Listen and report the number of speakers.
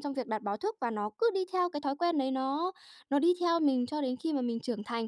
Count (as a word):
one